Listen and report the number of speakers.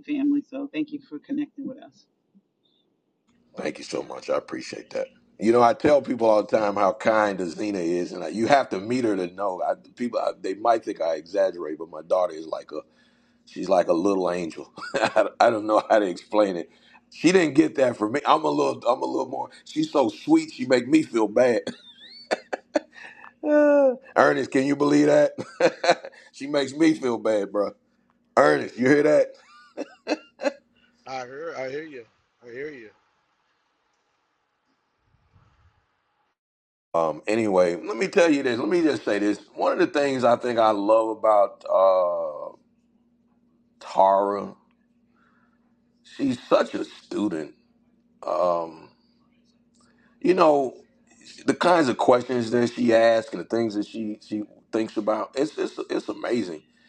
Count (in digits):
3